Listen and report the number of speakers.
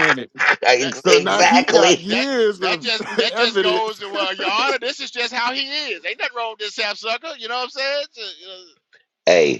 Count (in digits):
3